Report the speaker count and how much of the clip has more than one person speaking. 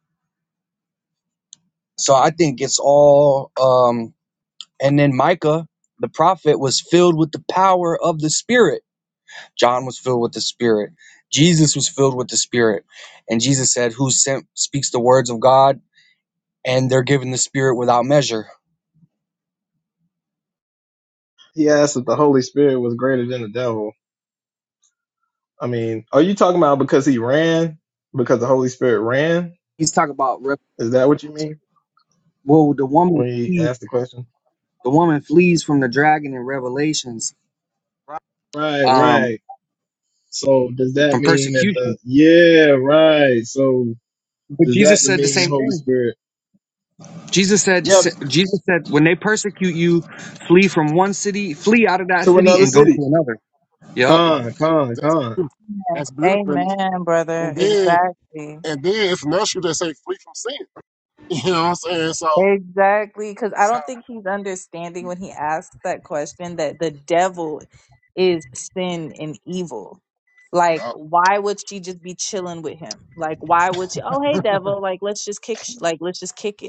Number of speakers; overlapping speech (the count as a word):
four, about 8%